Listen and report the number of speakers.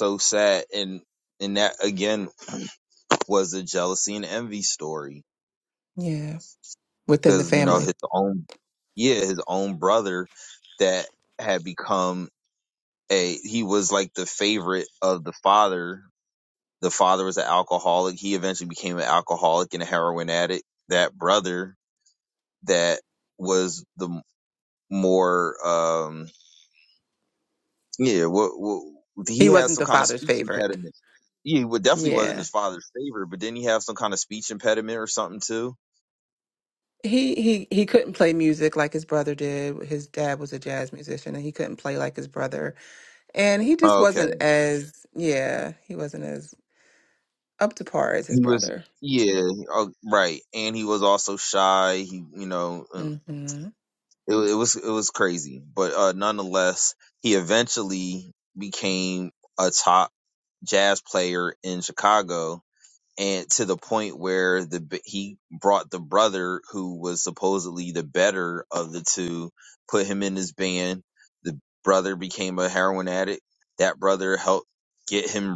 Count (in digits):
2